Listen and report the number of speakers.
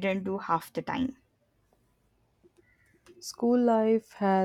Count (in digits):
2